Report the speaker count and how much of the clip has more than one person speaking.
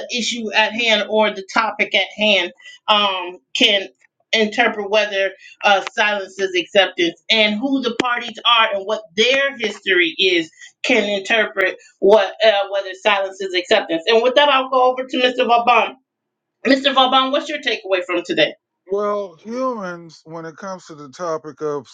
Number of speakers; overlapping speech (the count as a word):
two, no overlap